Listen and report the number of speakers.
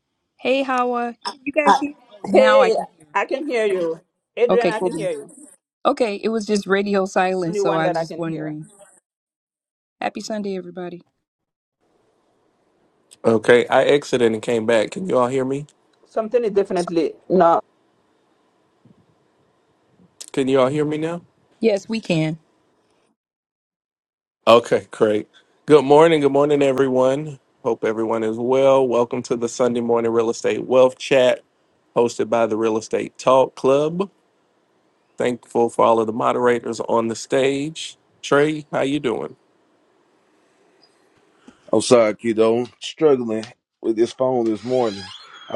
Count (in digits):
4